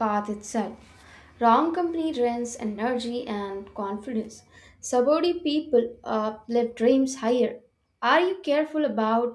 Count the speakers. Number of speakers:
one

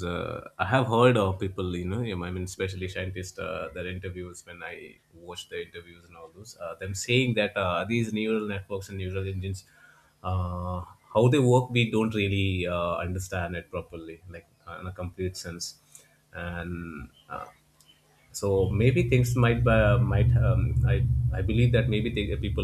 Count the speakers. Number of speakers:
one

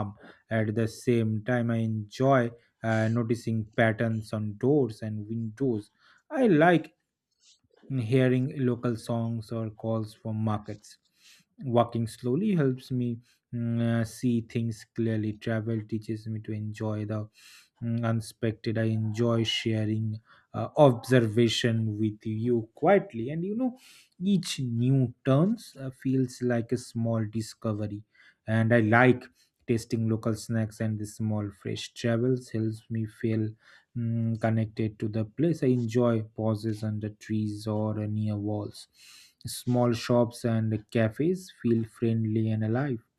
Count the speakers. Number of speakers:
one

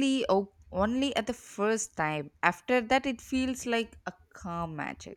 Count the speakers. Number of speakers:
one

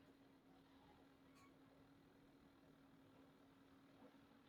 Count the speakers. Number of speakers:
zero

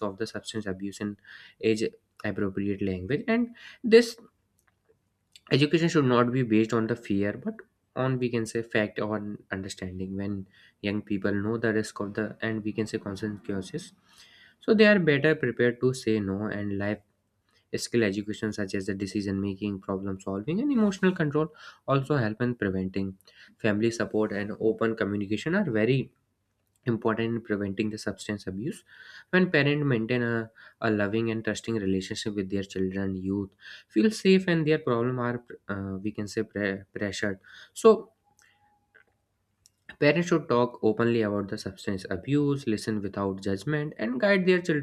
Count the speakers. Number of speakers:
one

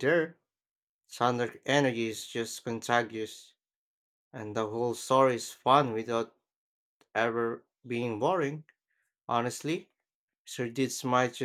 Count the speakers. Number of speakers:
one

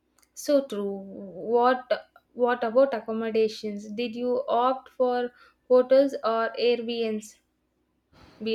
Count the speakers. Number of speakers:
one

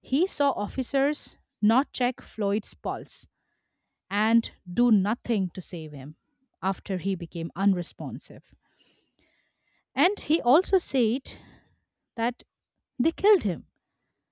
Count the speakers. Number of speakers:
one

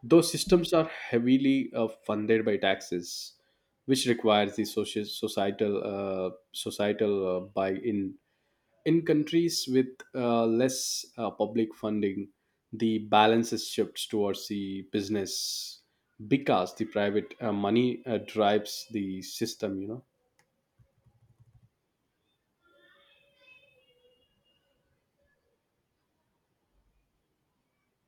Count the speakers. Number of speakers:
one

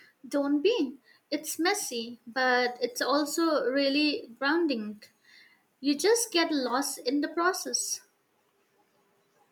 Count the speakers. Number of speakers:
one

